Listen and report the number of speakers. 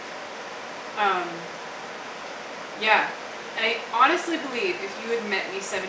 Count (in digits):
1